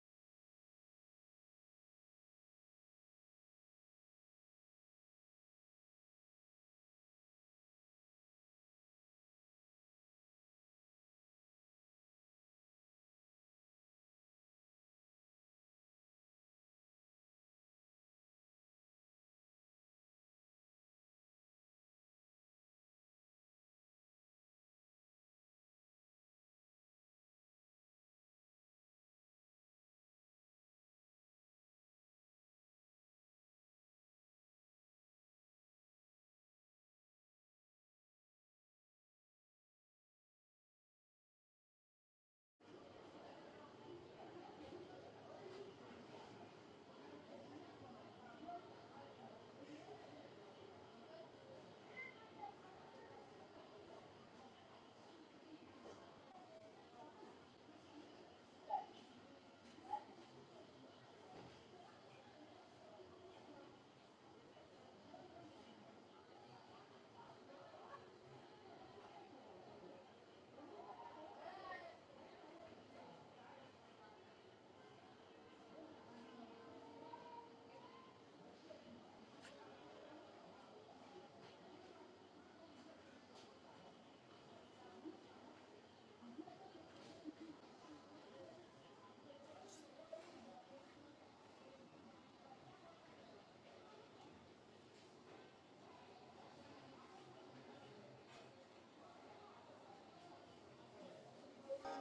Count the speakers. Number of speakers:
zero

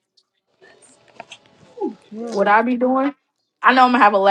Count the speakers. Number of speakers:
one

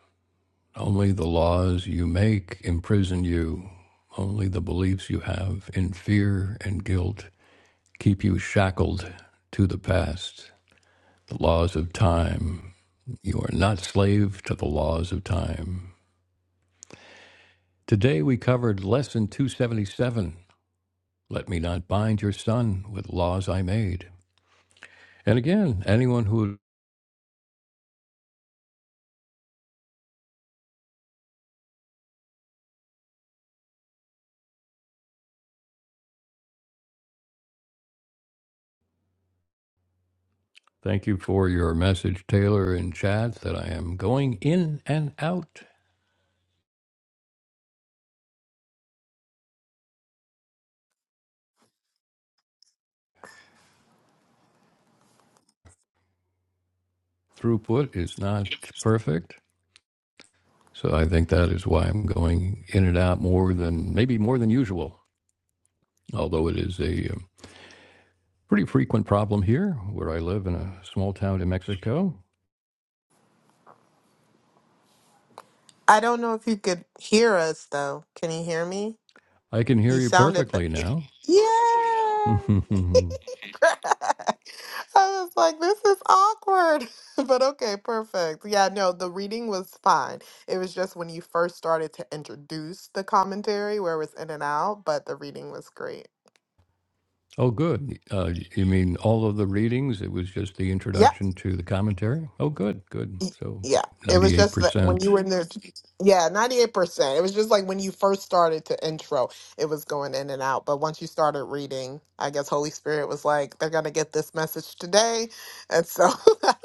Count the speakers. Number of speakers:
two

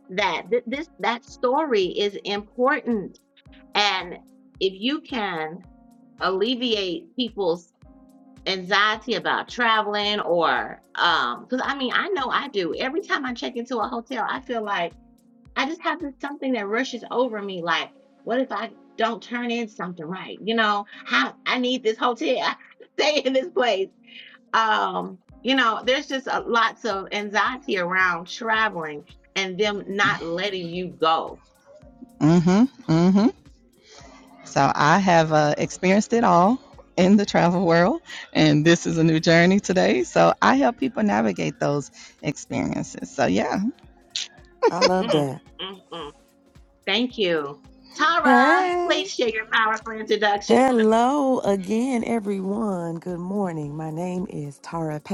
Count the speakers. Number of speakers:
three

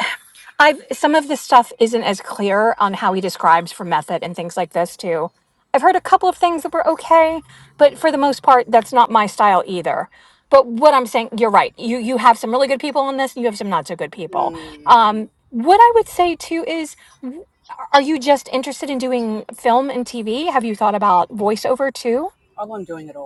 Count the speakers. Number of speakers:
two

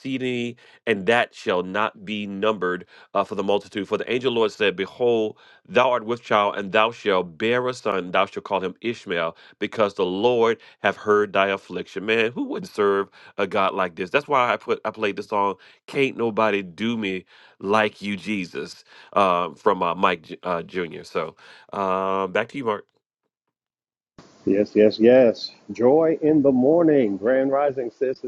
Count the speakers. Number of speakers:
two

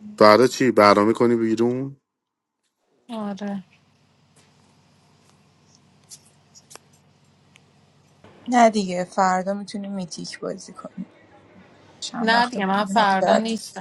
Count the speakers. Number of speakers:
three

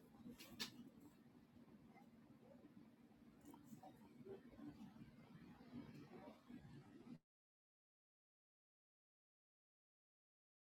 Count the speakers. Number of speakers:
zero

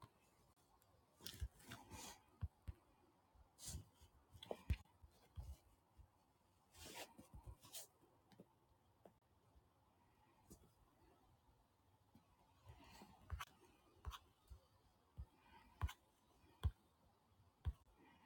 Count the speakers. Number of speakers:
zero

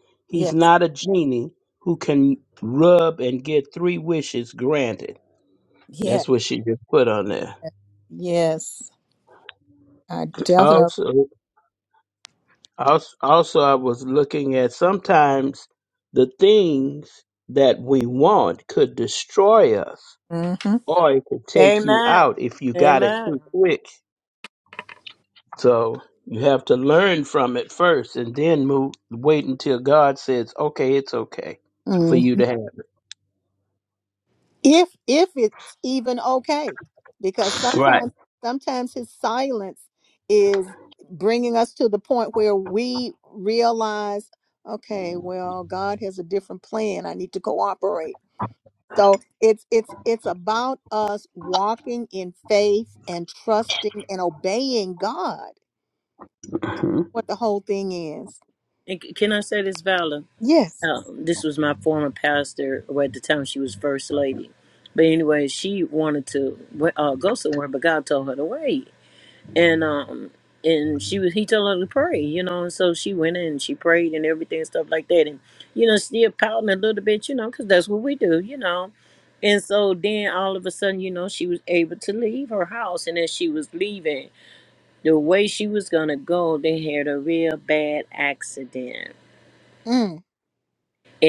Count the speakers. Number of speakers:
three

